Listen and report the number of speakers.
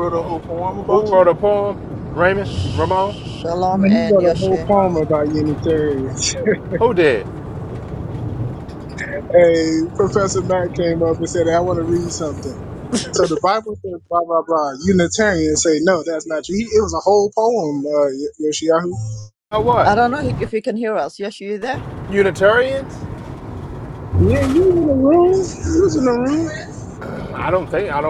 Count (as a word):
four